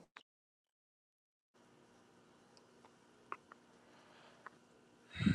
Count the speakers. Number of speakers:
0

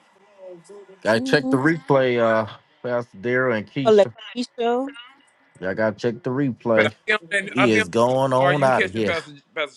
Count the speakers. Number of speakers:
3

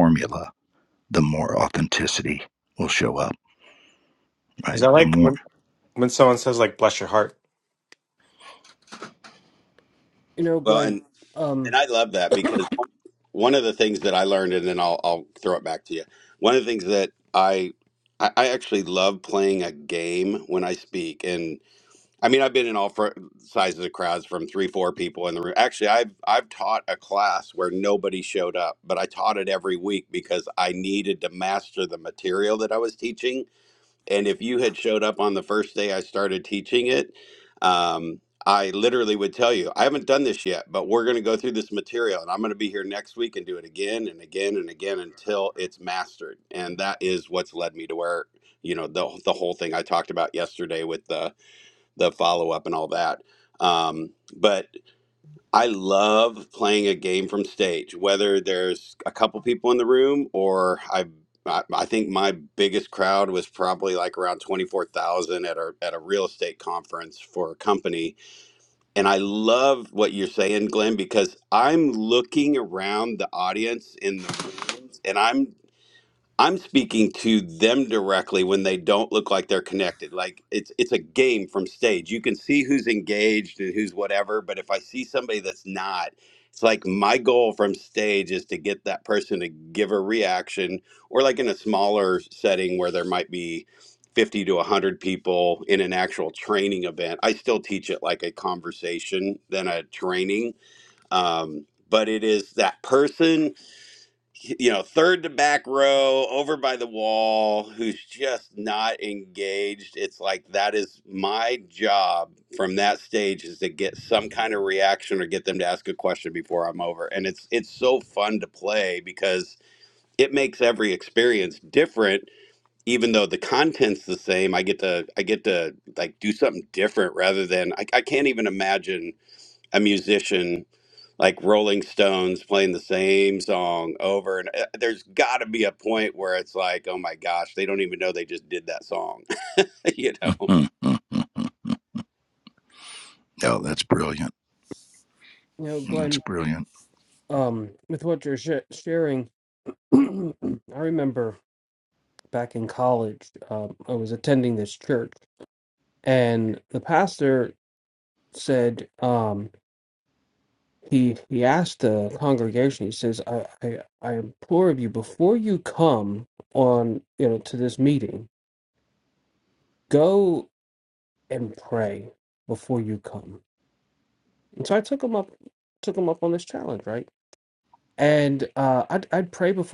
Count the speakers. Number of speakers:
4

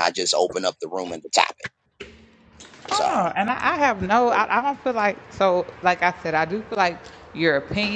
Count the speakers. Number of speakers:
2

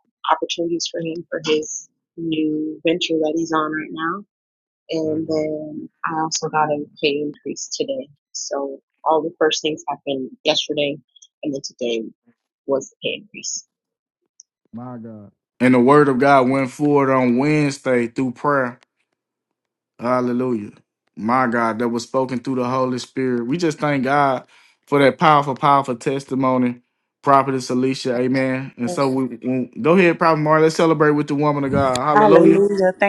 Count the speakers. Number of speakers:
3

